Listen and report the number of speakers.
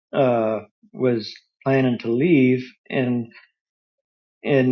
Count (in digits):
1